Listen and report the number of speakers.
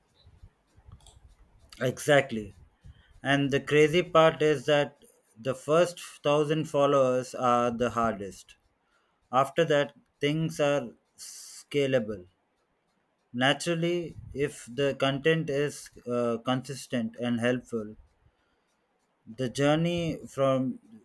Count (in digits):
1